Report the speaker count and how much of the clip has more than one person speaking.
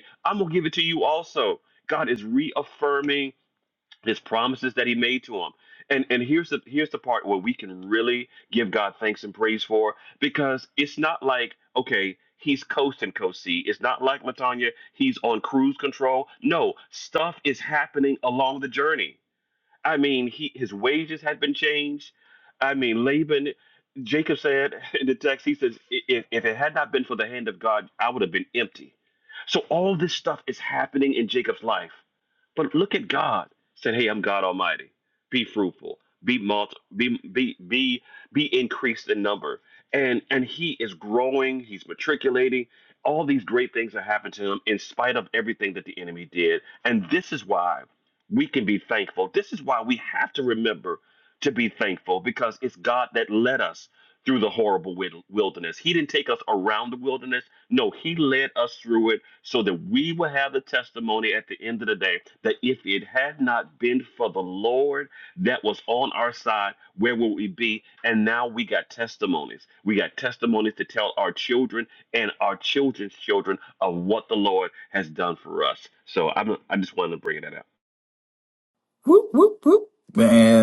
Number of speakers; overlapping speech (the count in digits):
2, no overlap